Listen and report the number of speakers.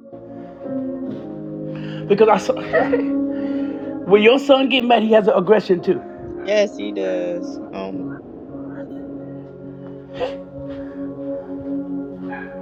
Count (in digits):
2